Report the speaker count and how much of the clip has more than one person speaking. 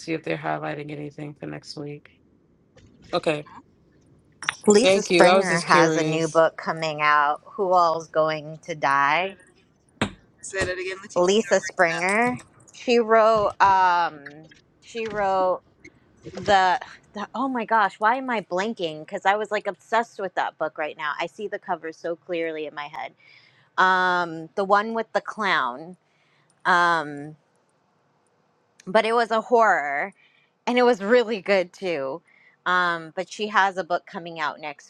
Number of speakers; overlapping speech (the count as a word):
three, about 6%